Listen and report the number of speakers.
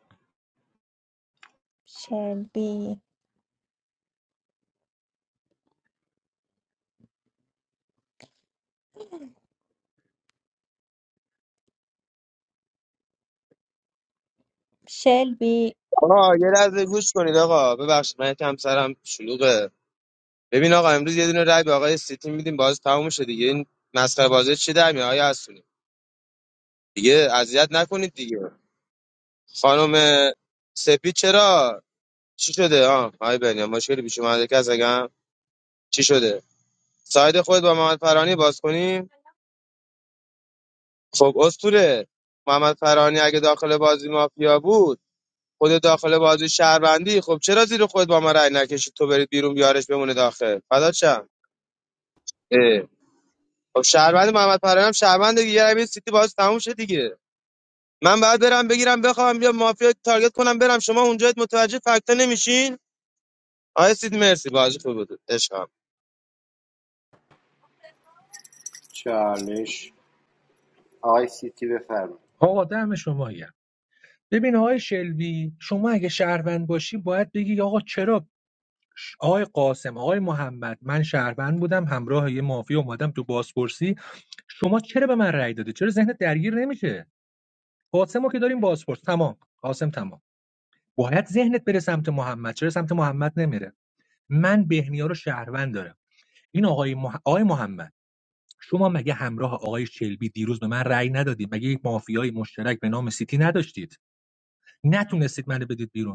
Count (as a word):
four